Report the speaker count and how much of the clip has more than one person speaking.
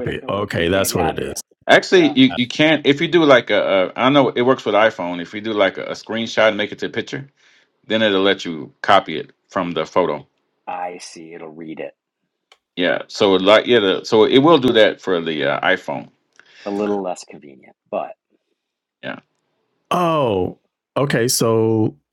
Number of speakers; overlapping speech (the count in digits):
3, about 6%